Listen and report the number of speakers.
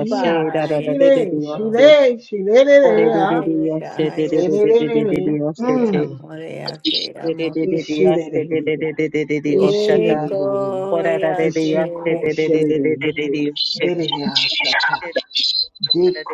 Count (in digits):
3